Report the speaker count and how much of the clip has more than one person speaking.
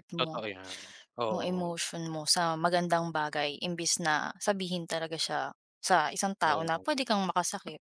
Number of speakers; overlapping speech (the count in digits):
2, about 15%